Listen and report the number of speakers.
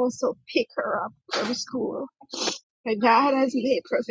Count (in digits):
1